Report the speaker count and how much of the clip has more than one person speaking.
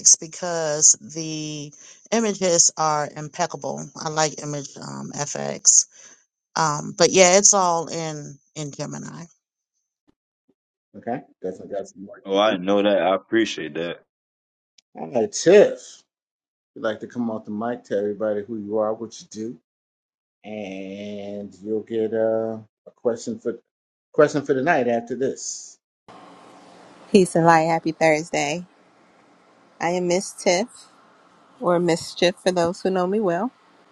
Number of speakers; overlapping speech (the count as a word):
four, about 1%